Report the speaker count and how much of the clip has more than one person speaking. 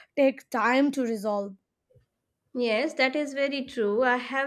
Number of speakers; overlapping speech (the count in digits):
2, no overlap